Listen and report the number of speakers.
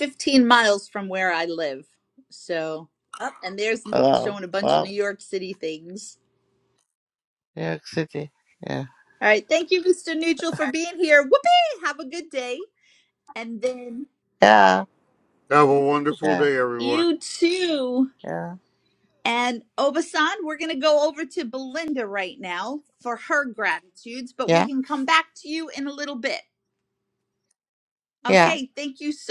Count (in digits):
3